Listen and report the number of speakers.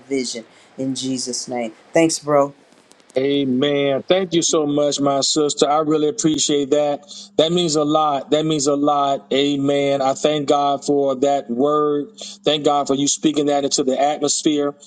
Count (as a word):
two